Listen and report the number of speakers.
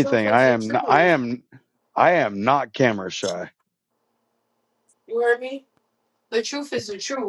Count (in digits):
2